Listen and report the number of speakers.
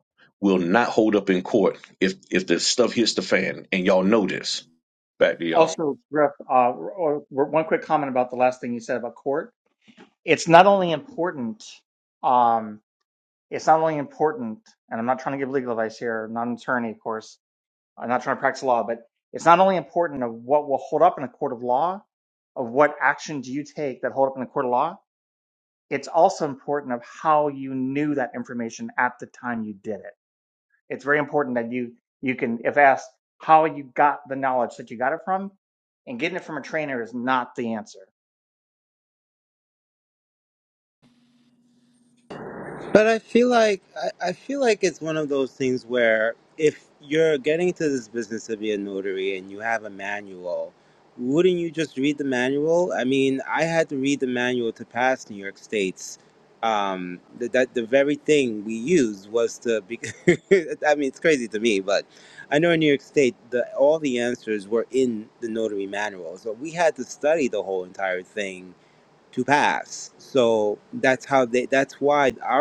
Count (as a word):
three